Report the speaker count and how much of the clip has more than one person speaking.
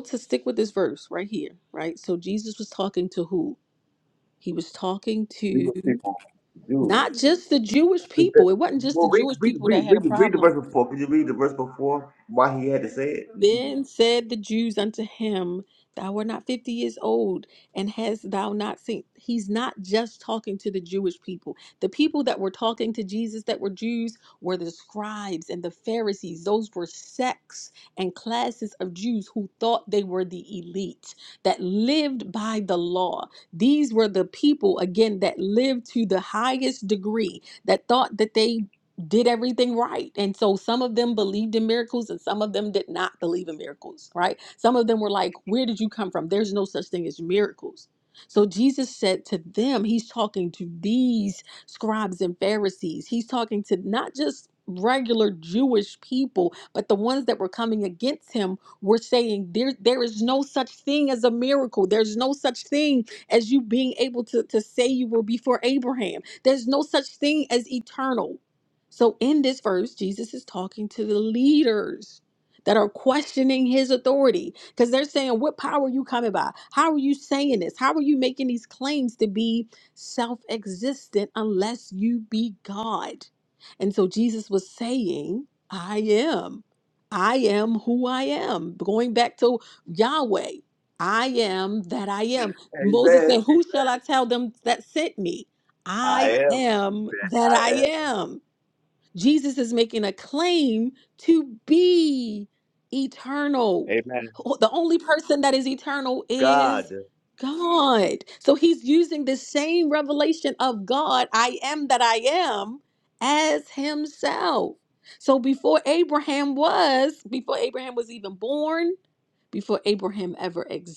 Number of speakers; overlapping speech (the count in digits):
2, about 4%